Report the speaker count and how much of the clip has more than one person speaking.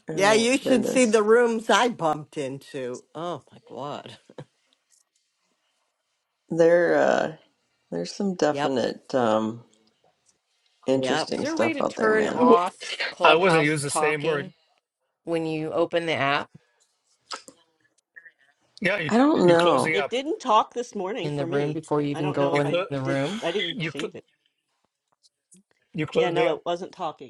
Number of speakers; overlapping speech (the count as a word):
five, about 29%